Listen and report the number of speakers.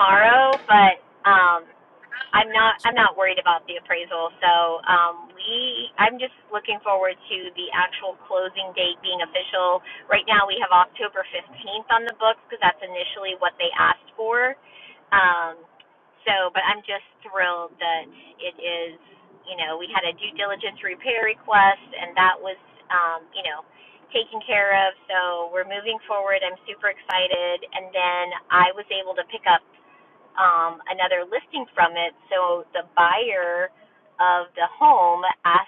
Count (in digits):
1